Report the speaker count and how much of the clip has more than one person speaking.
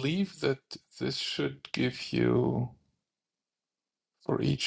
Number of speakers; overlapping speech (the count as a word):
one, no overlap